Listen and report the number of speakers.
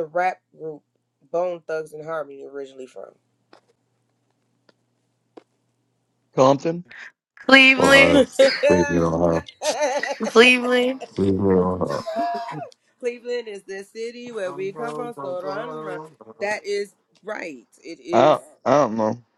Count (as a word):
four